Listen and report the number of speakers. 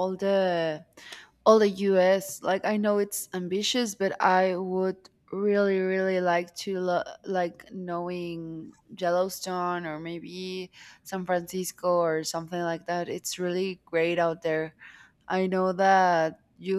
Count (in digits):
1